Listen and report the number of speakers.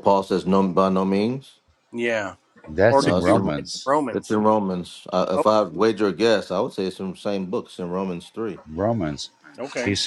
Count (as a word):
three